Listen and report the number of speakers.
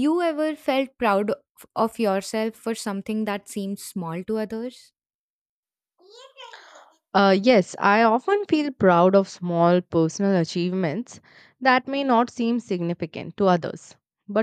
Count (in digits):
2